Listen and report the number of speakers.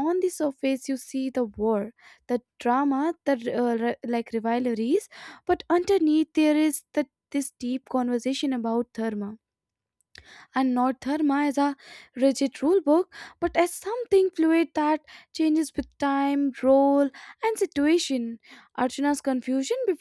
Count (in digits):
1